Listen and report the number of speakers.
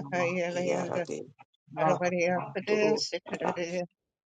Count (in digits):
2